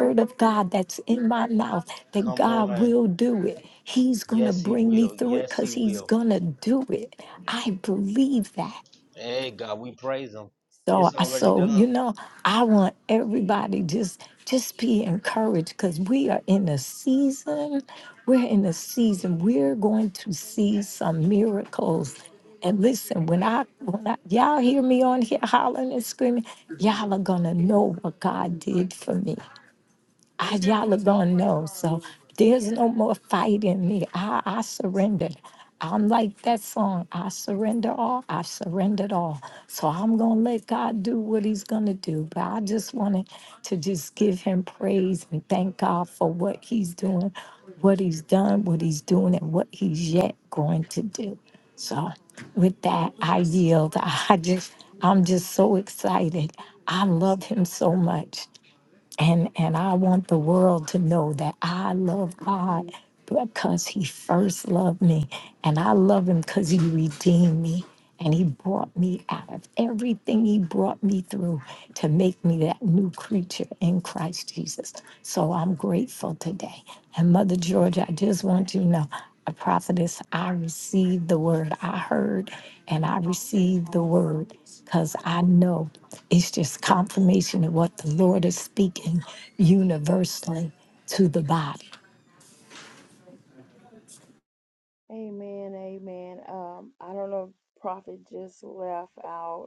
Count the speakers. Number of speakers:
3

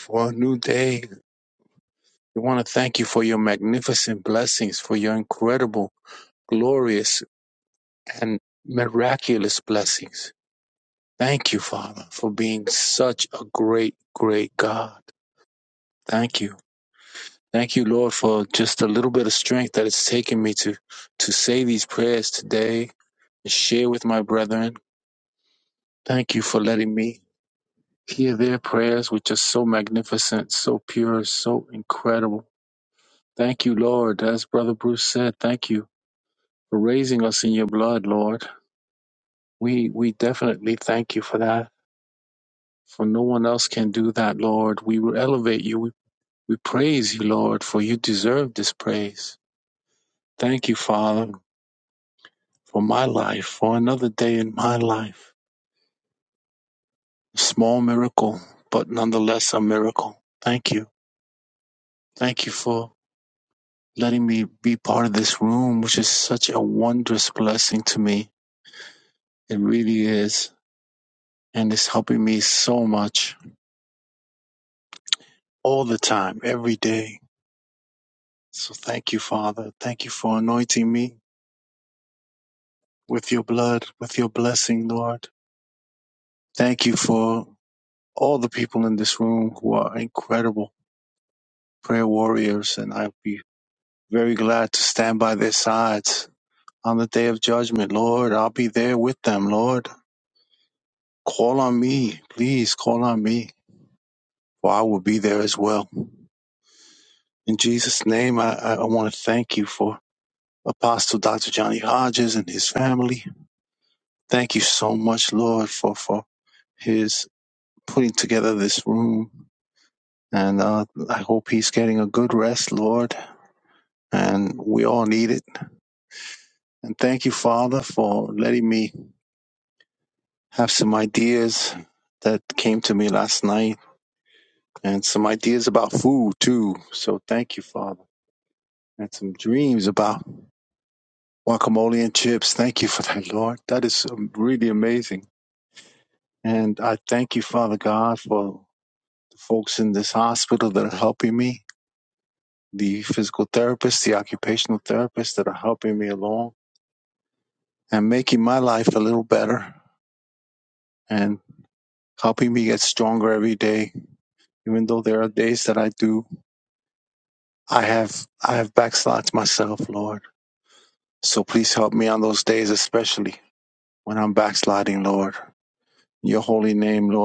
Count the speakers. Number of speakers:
1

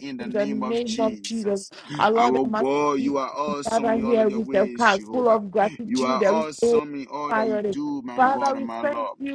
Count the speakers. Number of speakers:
2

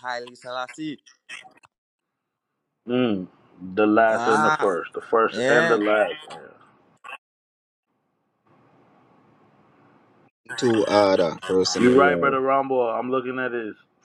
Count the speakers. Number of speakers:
3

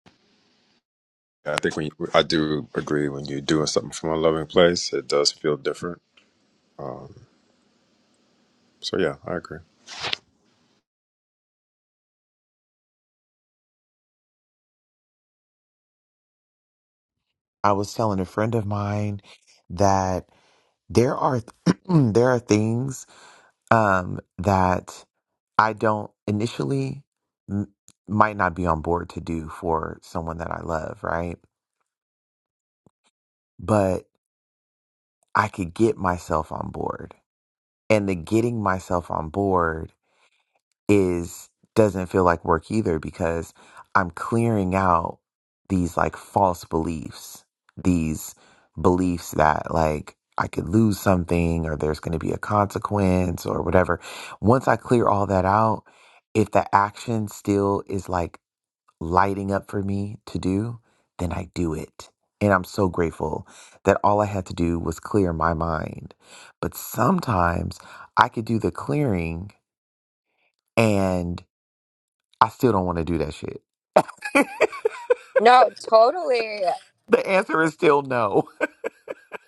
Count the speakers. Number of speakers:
3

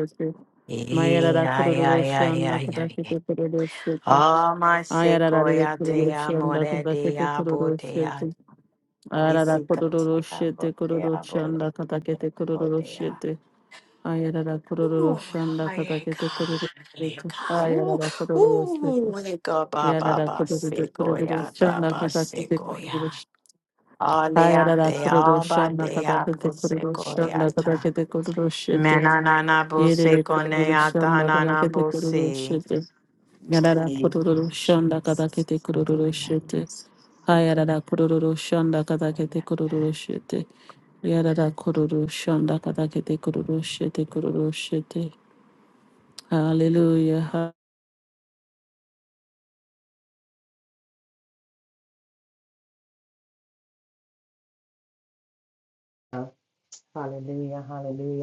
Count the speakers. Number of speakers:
3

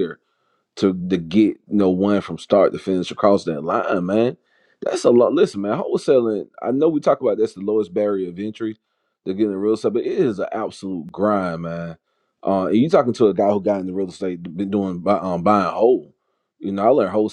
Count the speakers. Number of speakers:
1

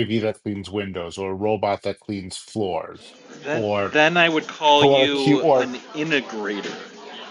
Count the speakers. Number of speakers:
2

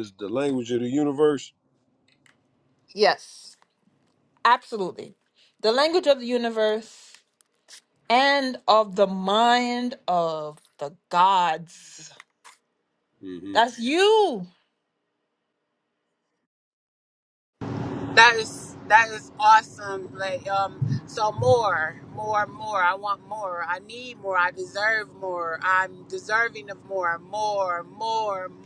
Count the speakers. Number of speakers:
3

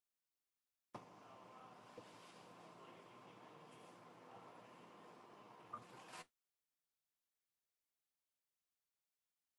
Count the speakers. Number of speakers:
0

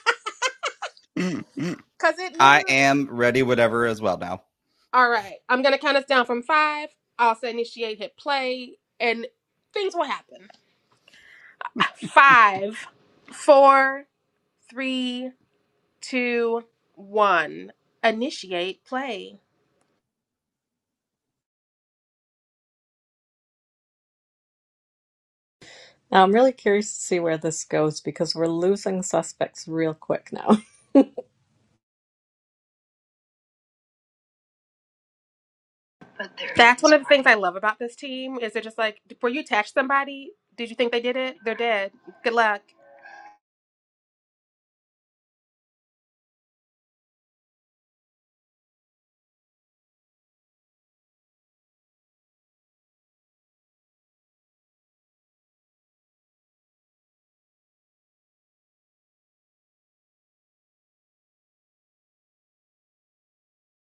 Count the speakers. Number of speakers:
3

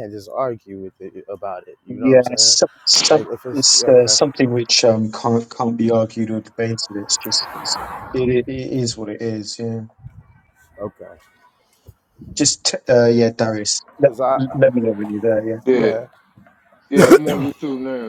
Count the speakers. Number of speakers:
3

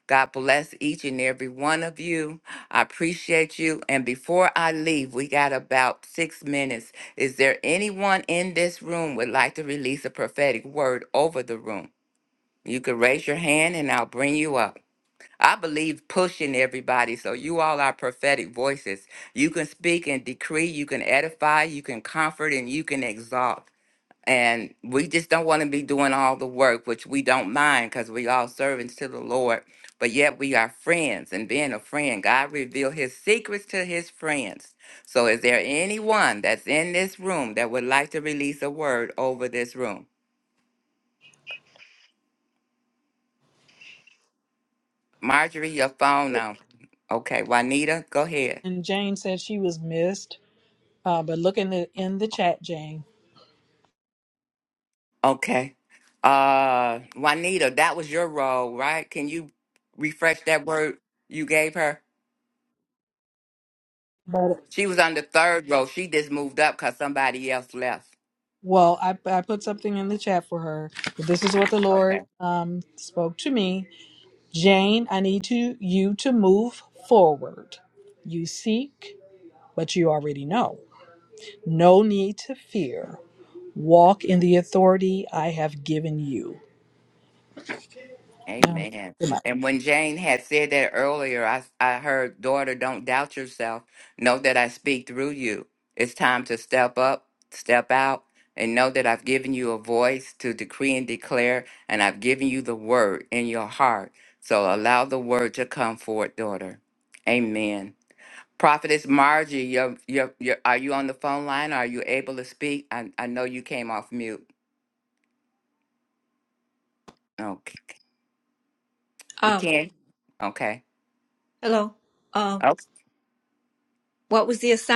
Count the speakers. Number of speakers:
3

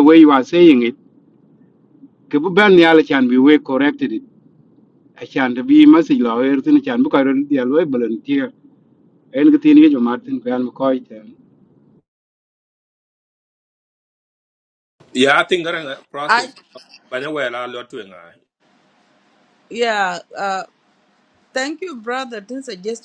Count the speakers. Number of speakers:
3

